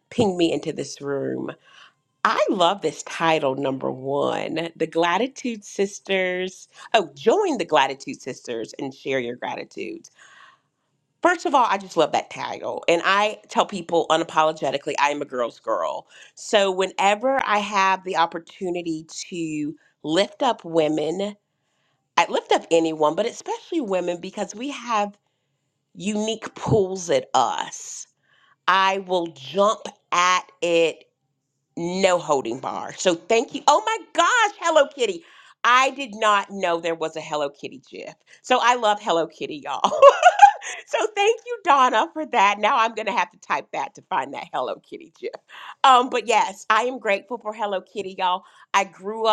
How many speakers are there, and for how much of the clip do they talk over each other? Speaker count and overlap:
1, no overlap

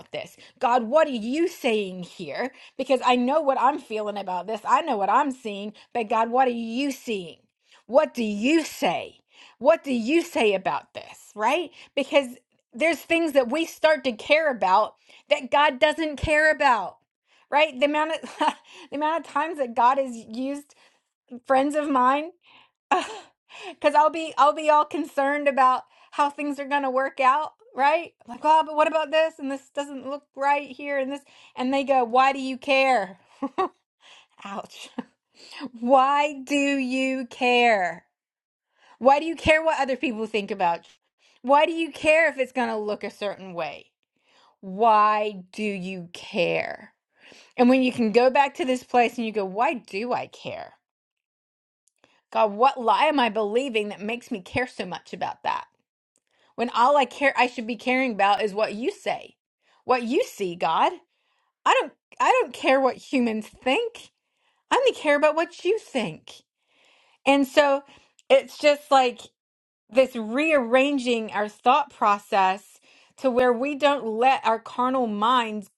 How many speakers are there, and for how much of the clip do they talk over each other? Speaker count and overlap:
1, no overlap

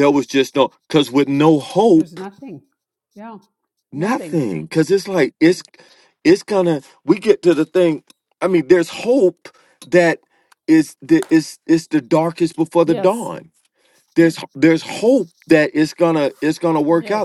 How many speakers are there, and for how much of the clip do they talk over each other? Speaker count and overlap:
2, about 8%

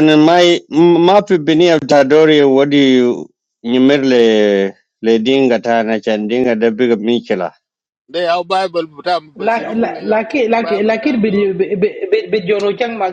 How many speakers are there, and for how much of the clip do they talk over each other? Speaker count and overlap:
3, about 16%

